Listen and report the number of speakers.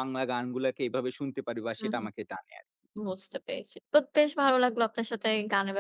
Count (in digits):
2